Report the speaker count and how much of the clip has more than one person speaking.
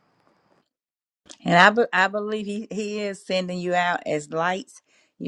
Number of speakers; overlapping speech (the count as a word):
one, no overlap